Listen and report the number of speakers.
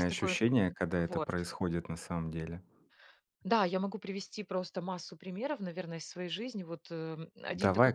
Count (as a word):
two